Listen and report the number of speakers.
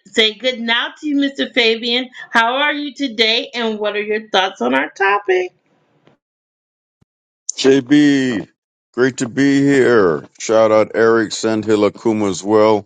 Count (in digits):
2